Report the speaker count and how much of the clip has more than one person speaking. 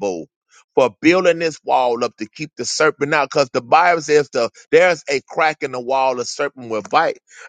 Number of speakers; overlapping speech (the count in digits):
1, no overlap